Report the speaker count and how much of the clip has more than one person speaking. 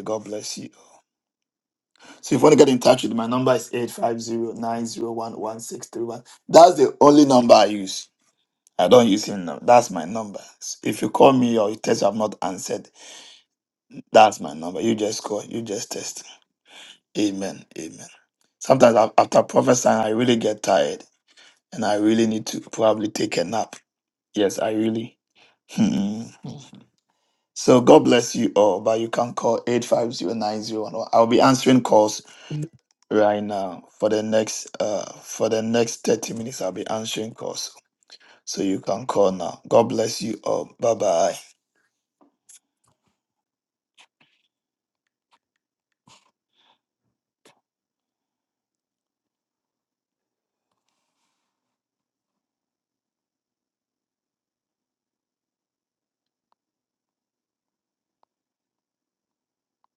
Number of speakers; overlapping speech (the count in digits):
1, no overlap